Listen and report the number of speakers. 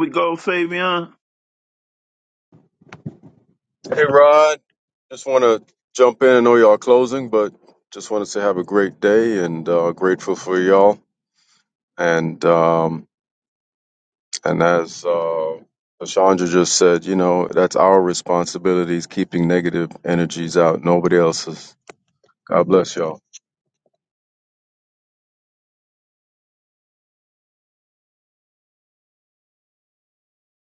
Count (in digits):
2